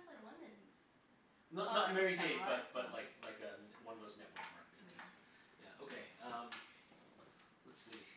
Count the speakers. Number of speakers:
2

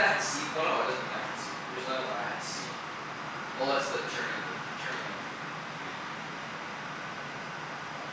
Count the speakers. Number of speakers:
1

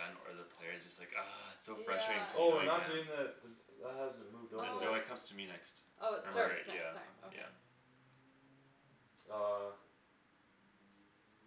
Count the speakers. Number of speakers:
3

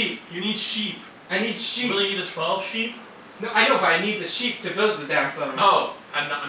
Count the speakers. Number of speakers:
2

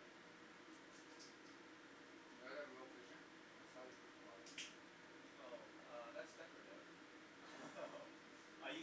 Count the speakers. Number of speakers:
2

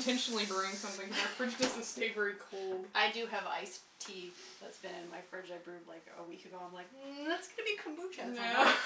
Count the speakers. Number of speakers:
2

